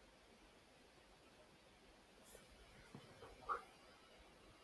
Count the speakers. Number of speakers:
zero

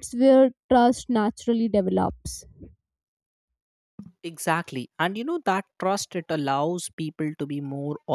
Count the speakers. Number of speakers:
two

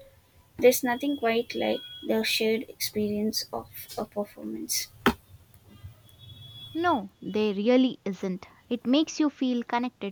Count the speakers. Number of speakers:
two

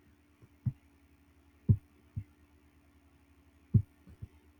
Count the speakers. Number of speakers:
zero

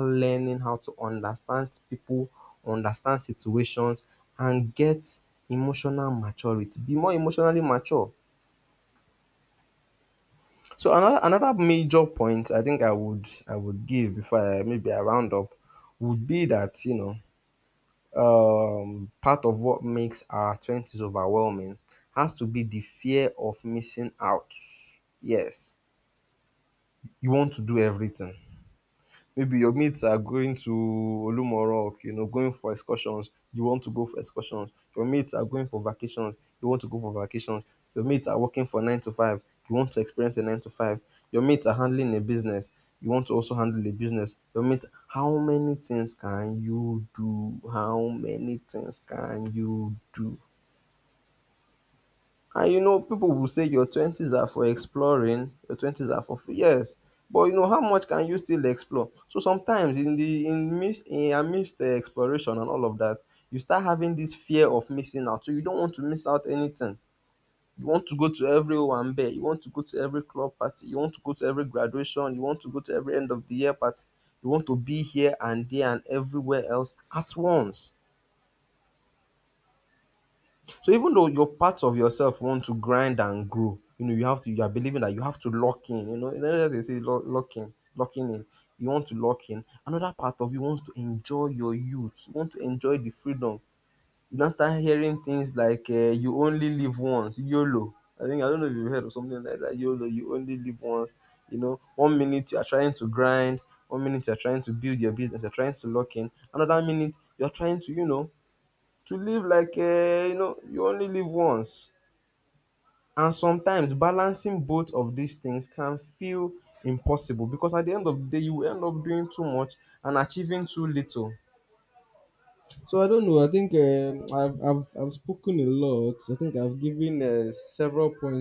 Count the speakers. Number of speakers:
one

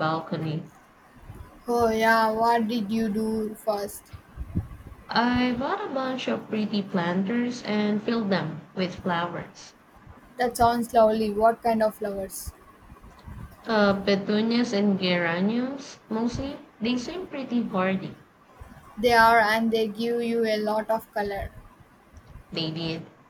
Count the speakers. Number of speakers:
two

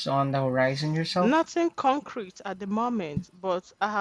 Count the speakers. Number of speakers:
two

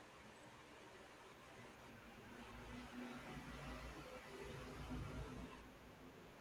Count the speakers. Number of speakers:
zero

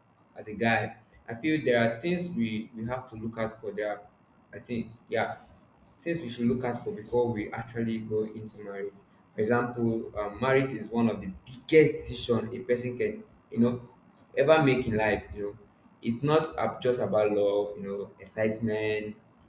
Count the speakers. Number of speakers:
one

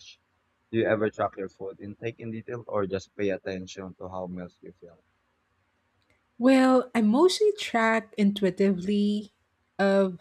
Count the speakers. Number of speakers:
two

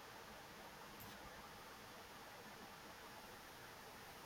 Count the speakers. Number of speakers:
zero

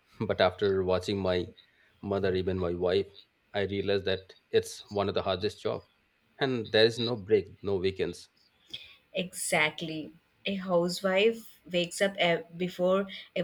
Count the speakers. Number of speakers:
two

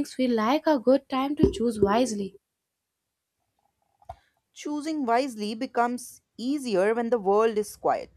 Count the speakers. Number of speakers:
two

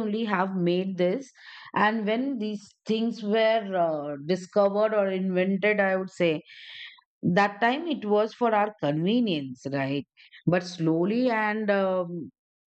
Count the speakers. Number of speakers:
one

